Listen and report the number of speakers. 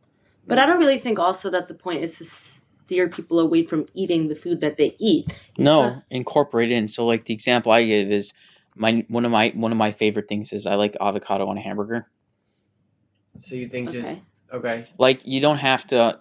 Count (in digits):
3